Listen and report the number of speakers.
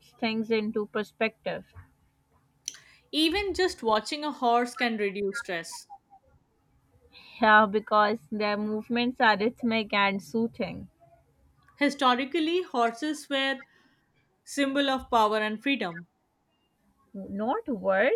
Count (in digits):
2